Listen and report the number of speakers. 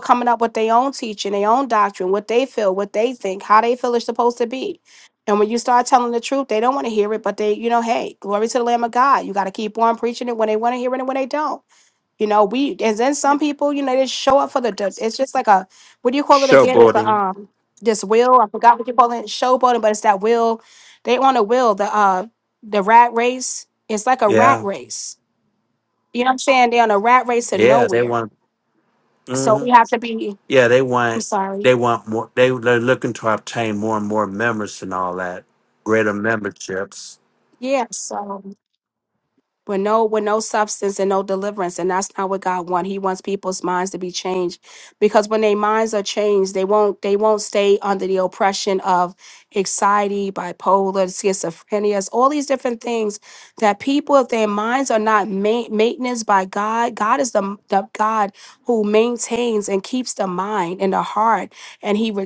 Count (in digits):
2